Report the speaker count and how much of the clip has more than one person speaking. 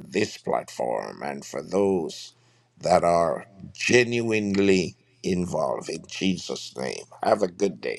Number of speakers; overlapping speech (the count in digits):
1, no overlap